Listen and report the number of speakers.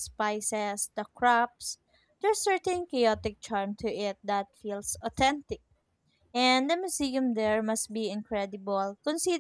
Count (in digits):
1